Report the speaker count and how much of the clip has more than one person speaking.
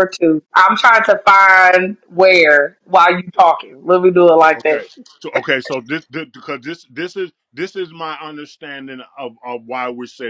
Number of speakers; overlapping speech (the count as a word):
two, about 3%